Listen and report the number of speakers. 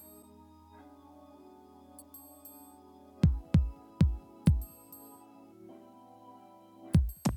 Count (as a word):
zero